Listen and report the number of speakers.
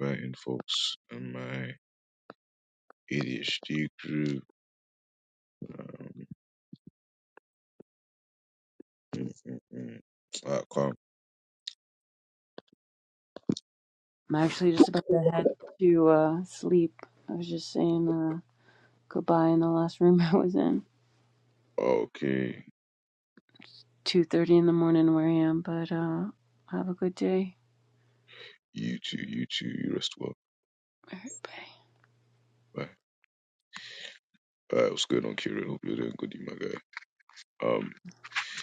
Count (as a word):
two